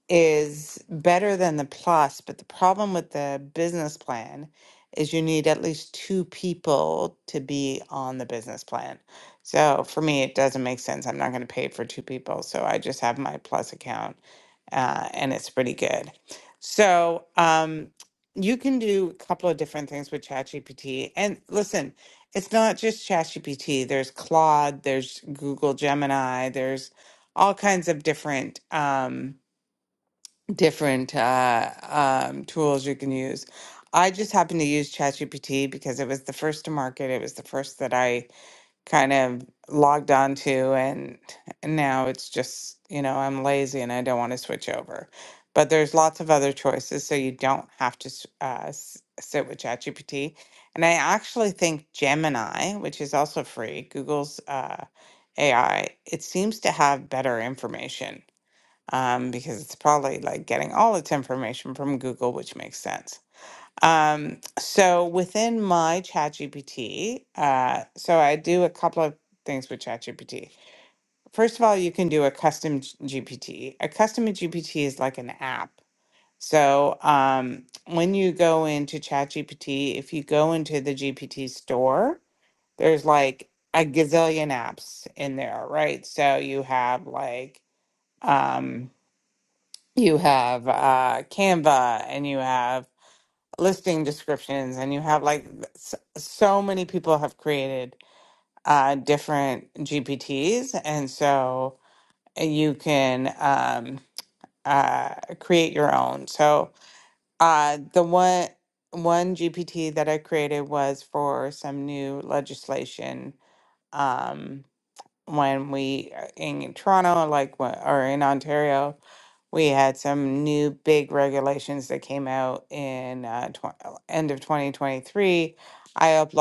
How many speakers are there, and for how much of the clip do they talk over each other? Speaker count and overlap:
1, no overlap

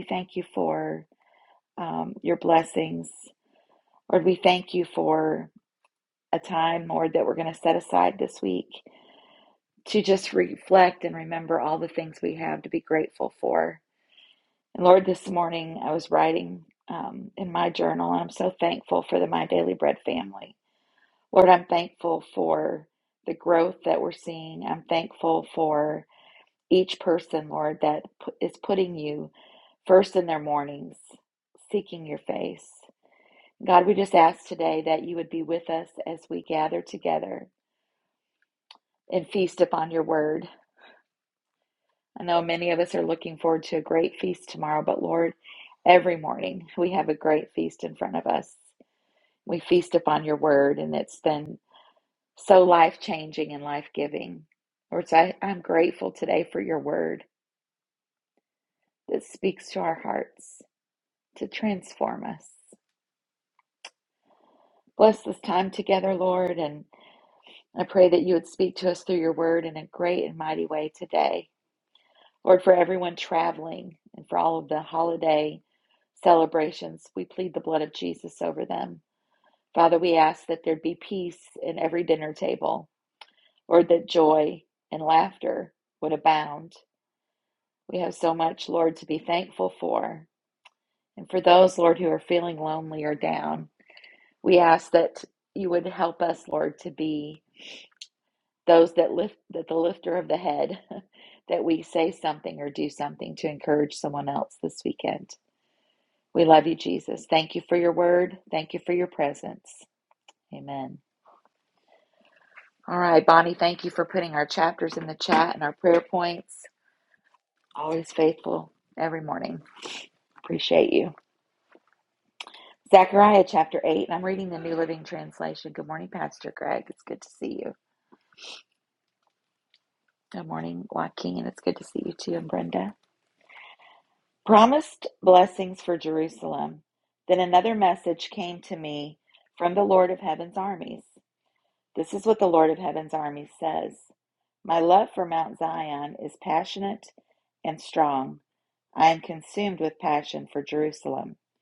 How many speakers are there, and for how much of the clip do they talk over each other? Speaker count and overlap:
1, no overlap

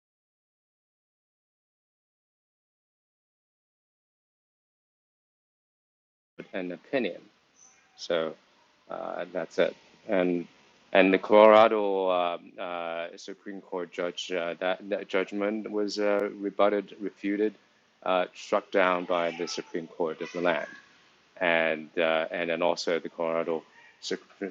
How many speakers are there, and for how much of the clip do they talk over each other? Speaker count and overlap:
1, no overlap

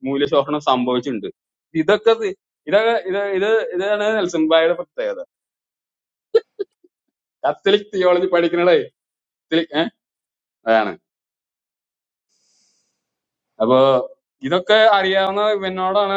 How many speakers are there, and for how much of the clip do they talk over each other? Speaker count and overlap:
1, no overlap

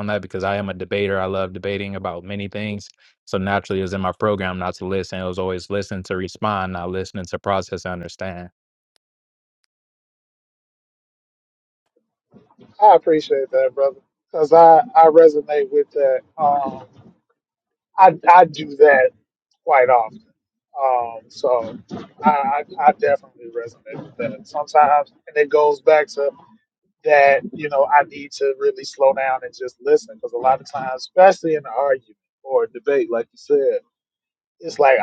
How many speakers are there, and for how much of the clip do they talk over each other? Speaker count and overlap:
2, no overlap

